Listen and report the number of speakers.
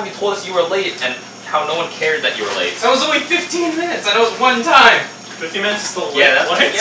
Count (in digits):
3